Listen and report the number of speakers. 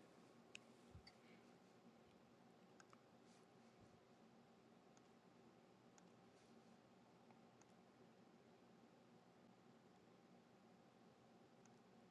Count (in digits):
0